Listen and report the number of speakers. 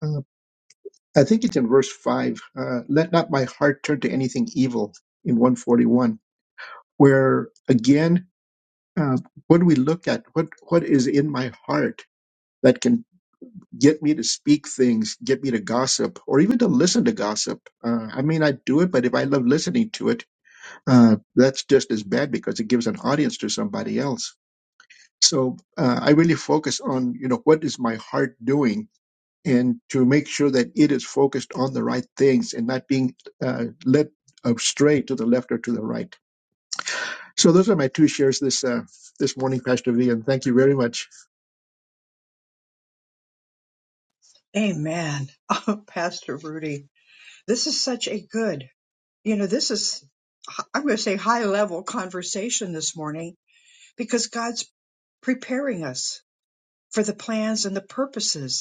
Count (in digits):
2